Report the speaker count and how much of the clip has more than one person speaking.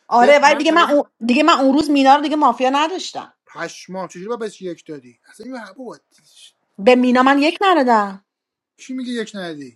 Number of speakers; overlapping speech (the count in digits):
2, about 9%